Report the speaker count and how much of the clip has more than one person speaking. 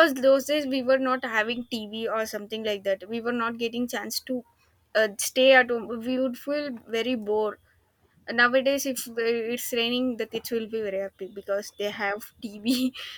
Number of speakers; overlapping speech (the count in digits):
1, no overlap